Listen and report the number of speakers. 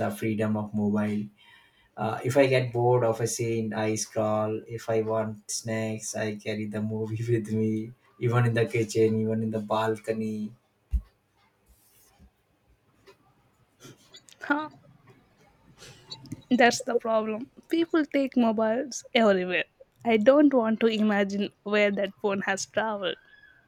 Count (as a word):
two